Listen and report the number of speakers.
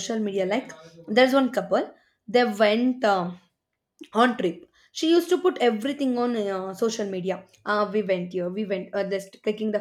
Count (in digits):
1